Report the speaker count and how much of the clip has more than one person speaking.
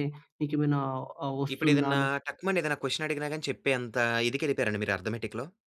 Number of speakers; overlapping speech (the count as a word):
two, about 12%